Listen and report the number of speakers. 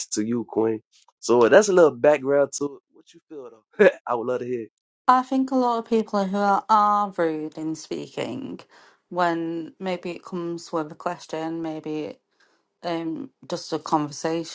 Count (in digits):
2